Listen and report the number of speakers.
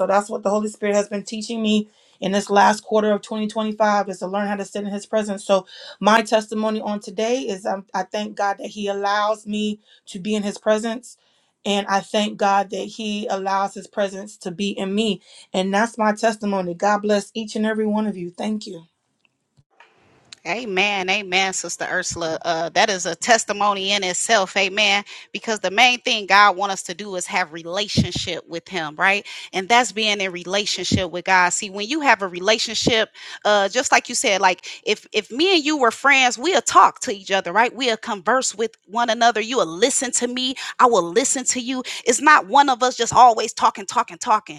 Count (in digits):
2